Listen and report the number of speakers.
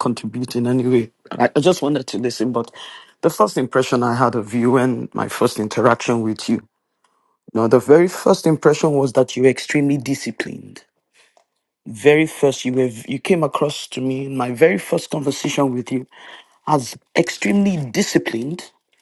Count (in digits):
1